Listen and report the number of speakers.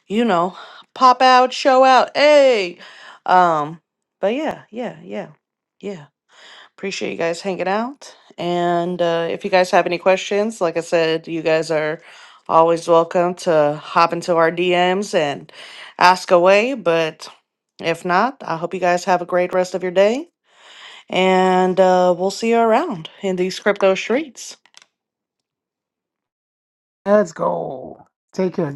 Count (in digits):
2